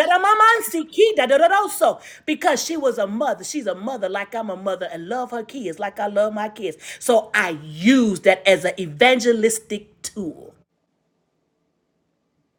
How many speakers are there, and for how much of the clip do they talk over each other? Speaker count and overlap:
1, no overlap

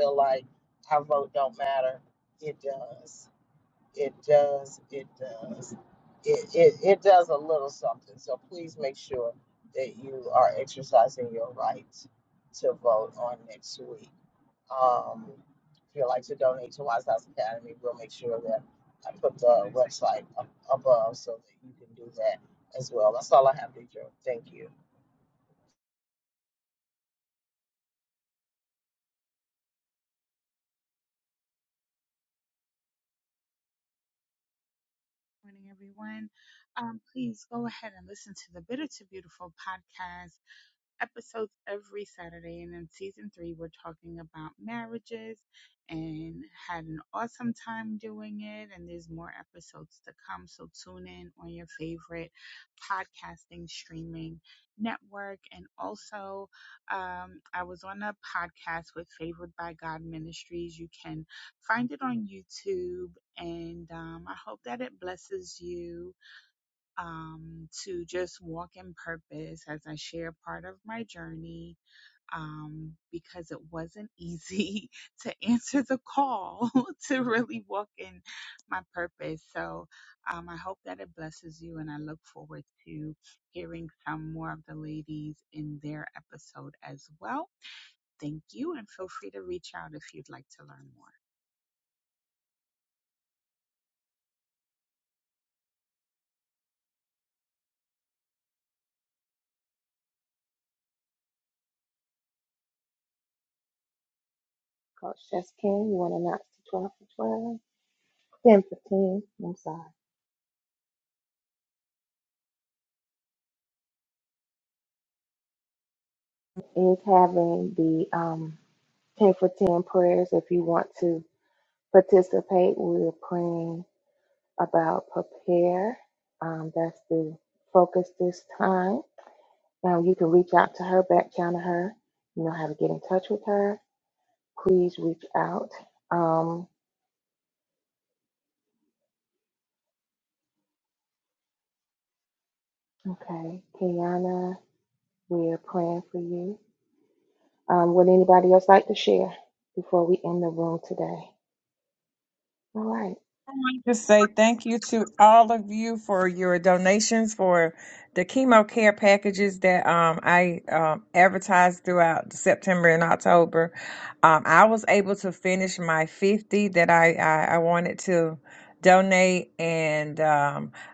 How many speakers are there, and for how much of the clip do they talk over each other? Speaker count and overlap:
4, no overlap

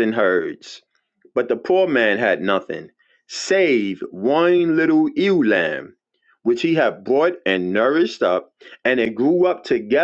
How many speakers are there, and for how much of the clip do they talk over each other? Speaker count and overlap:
1, no overlap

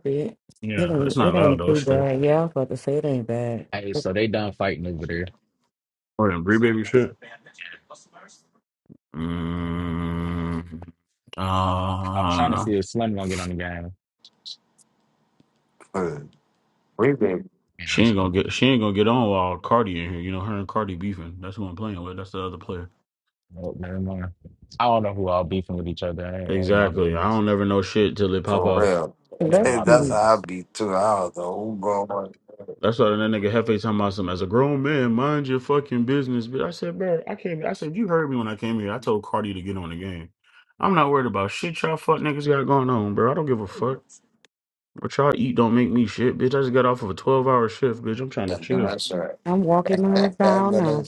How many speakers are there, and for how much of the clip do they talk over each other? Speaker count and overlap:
4, about 10%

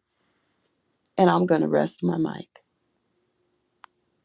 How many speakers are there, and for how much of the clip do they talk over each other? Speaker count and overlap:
1, no overlap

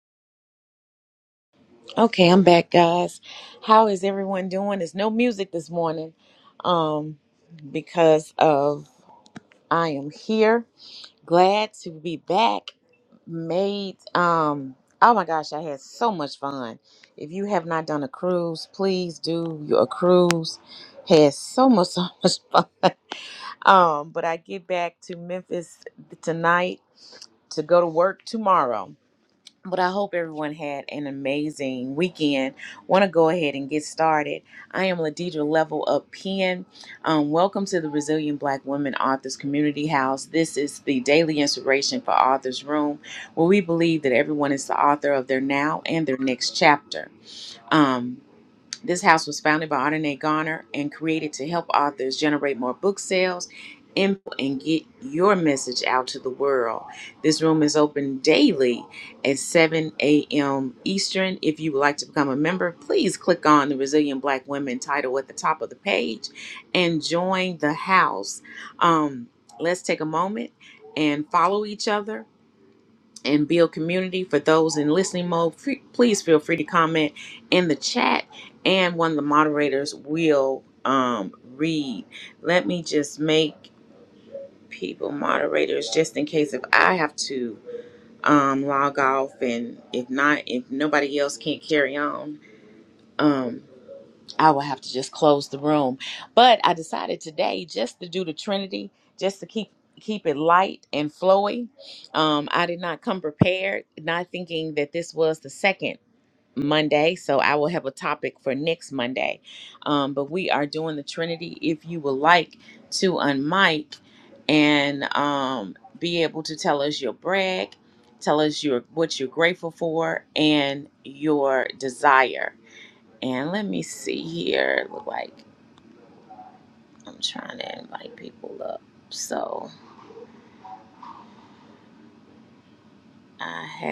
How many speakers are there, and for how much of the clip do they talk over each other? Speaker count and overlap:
1, no overlap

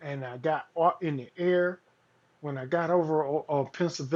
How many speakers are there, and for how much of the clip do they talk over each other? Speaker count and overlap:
1, no overlap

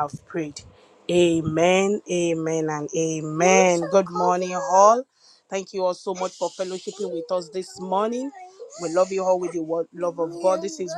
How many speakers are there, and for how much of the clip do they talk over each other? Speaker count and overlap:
1, no overlap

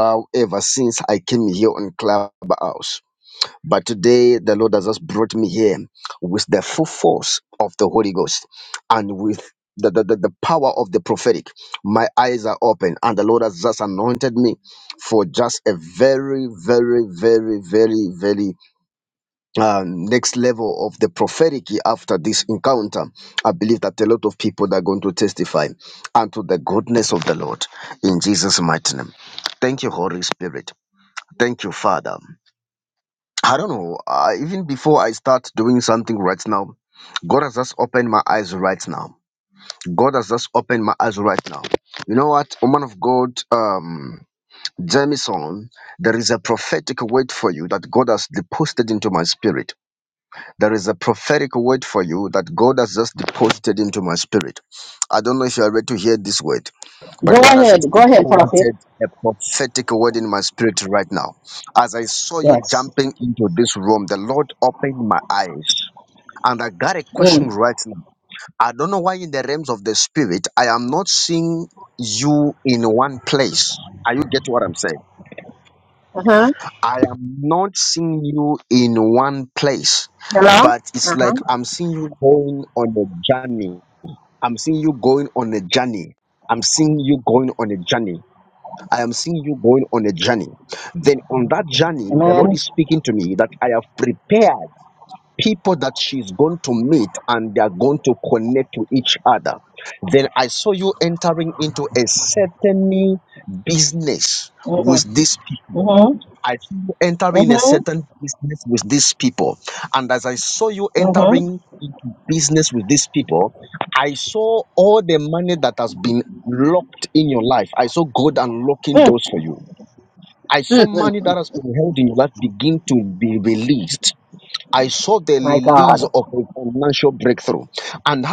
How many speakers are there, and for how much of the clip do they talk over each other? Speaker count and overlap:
2, about 5%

